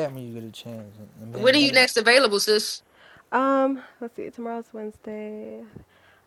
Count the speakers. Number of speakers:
three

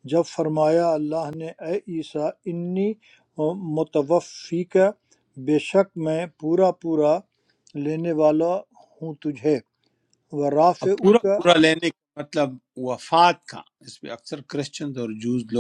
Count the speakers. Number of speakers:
two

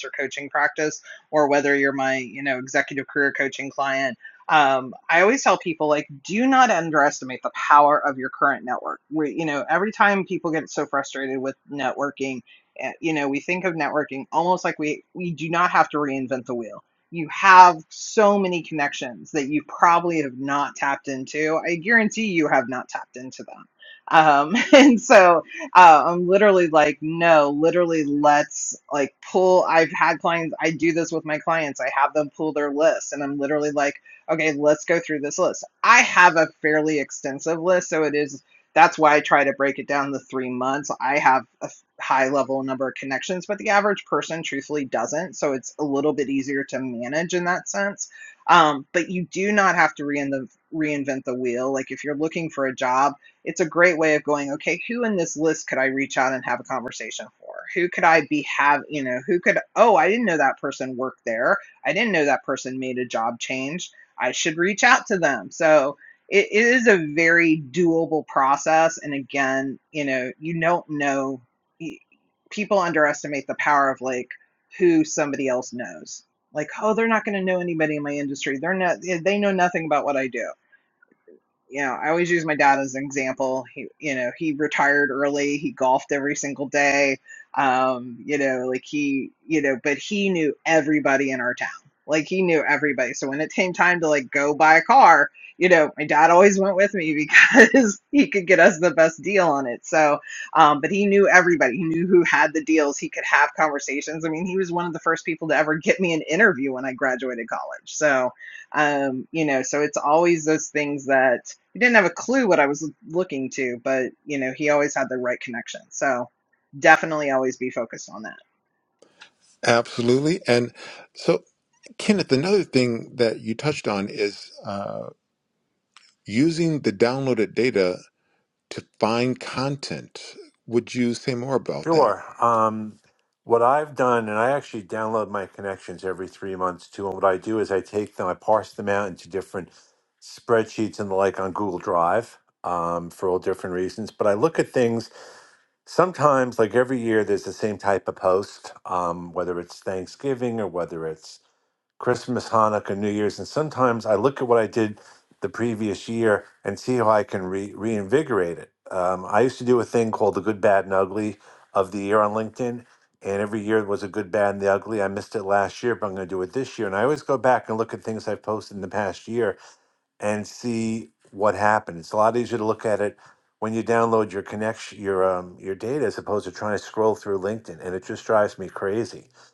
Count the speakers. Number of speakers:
three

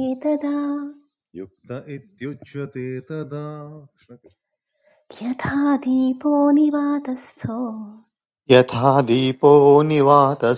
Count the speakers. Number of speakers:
three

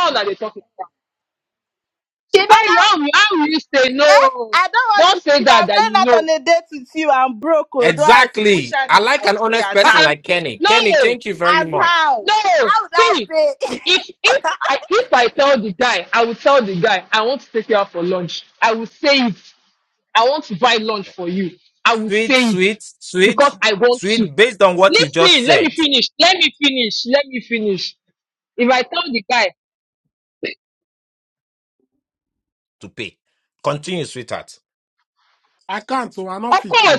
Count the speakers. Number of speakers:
four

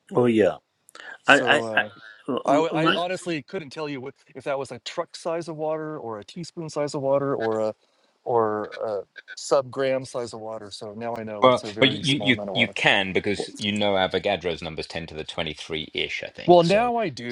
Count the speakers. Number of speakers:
three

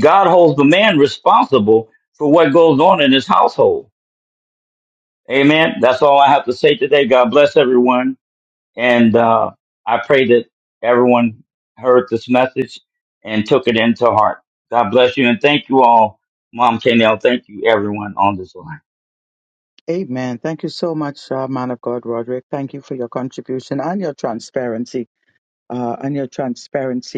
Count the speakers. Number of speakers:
two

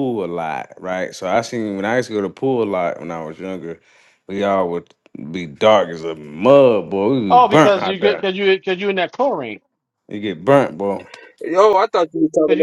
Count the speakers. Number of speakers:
three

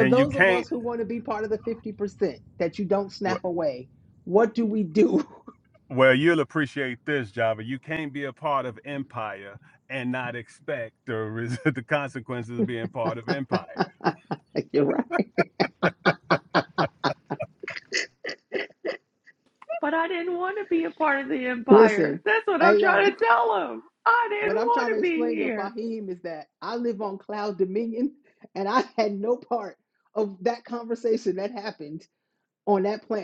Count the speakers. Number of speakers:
three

